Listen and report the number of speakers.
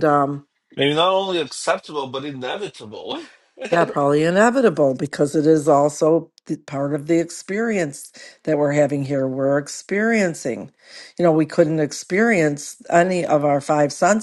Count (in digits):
2